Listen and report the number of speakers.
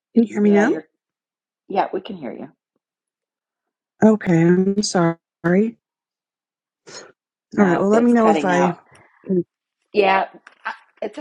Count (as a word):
two